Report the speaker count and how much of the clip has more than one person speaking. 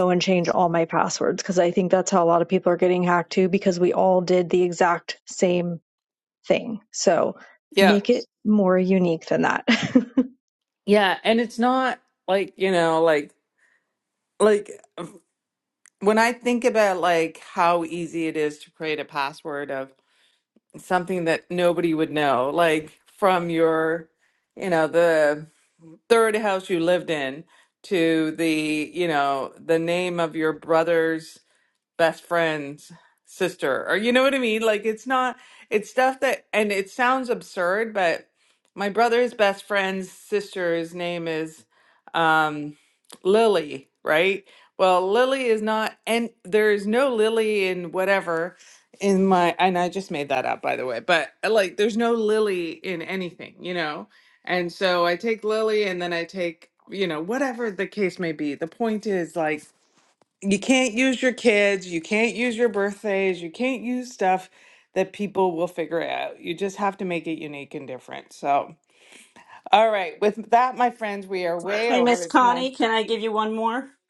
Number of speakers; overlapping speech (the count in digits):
3, about 1%